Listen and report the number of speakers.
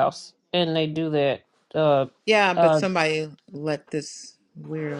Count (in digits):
2